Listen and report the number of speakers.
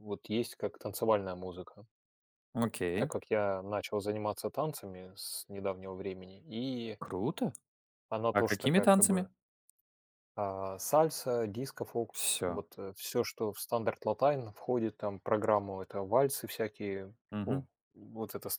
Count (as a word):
two